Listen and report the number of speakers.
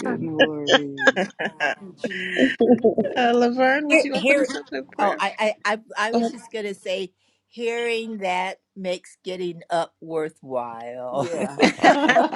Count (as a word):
four